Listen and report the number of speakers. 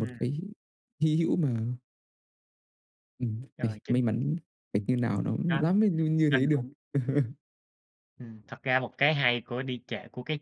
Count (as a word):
two